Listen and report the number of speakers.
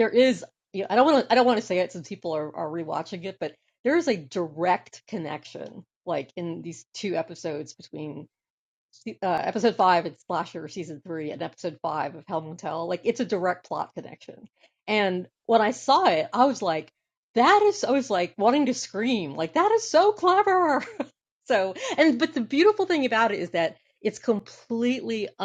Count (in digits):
1